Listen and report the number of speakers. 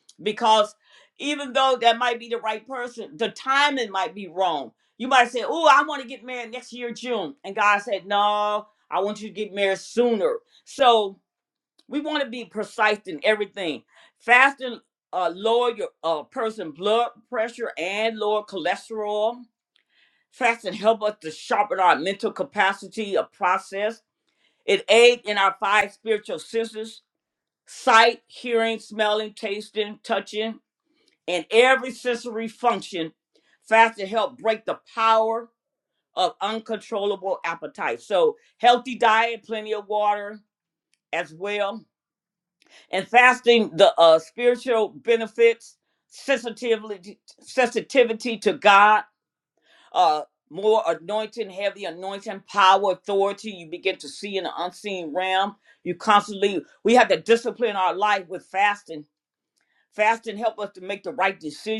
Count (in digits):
1